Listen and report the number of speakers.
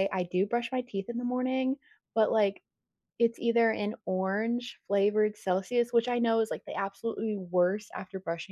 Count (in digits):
1